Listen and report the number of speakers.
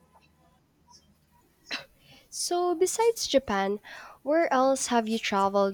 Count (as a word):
one